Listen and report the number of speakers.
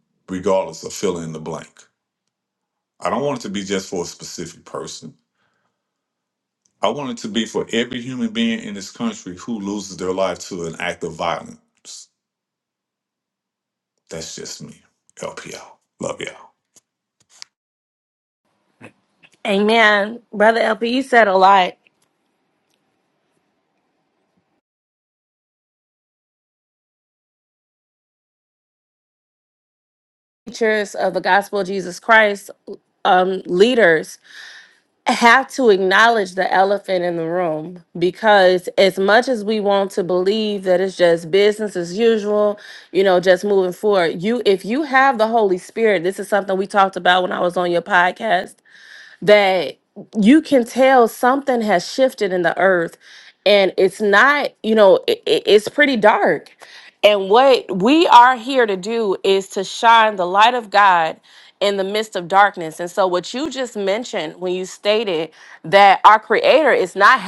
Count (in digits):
2